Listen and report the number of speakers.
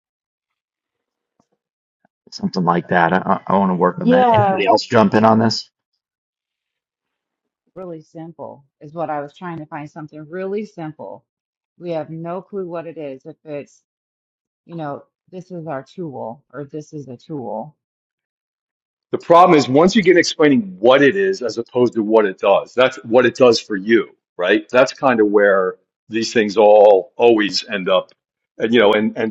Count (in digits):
3